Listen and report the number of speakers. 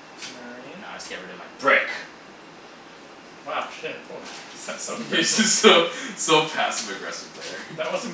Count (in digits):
3